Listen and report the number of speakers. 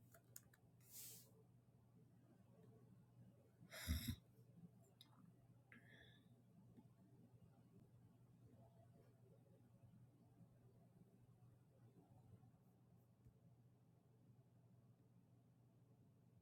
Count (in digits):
0